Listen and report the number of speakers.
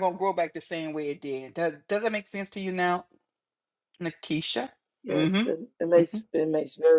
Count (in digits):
2